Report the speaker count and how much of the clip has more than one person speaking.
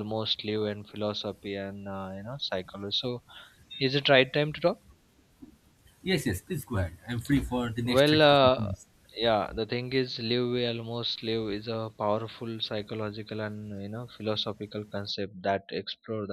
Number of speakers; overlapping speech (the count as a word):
two, about 5%